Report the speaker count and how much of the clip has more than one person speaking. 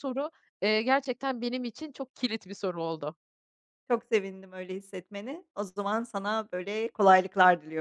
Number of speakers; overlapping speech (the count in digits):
2, no overlap